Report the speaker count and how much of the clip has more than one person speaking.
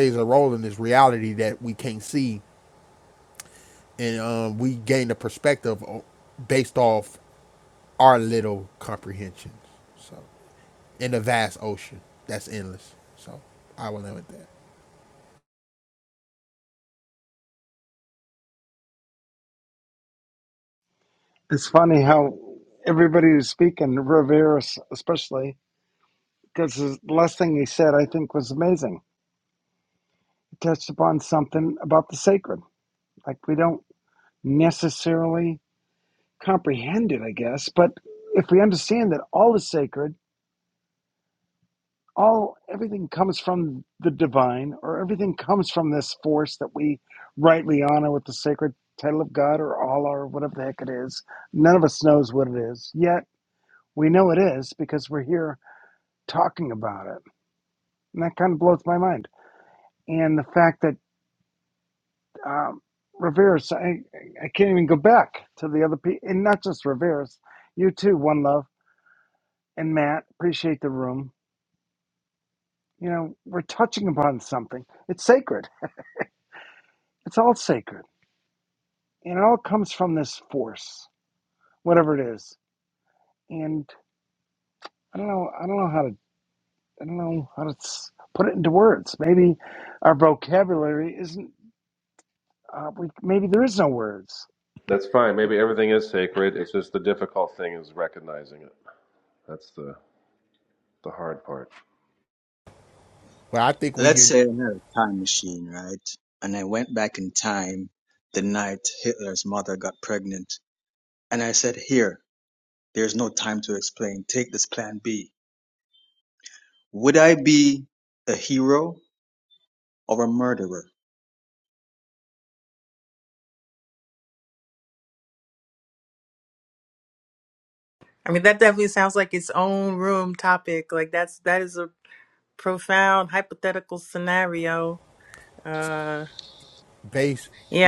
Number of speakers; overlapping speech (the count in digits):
5, under 1%